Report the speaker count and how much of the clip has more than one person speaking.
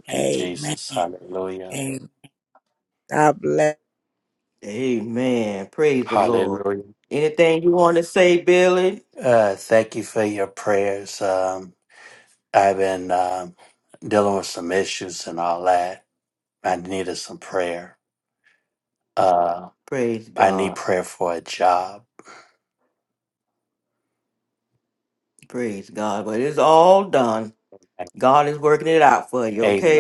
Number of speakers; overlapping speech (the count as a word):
three, about 7%